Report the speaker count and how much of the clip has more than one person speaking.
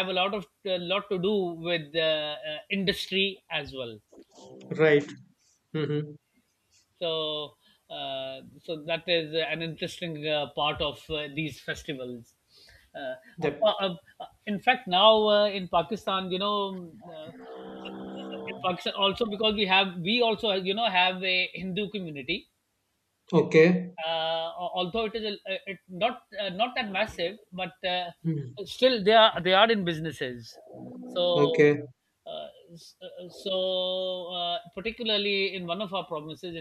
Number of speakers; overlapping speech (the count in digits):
2, about 2%